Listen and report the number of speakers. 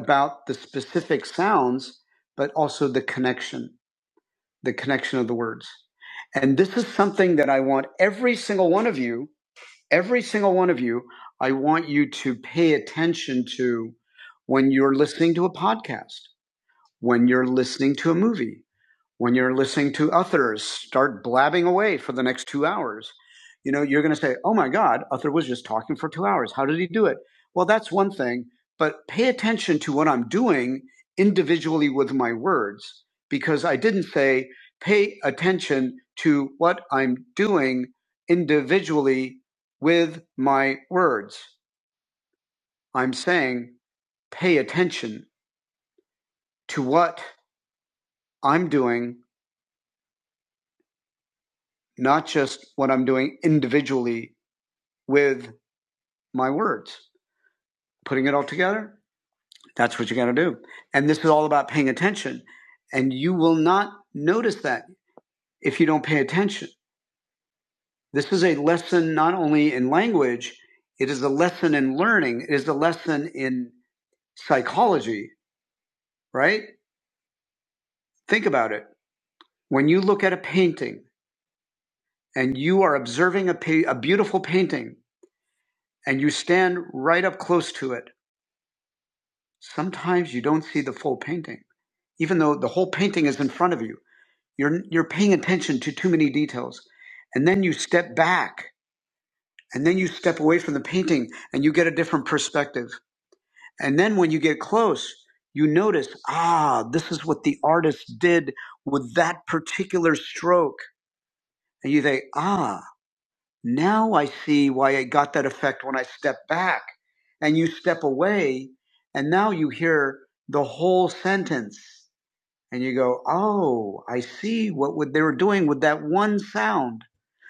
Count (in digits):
1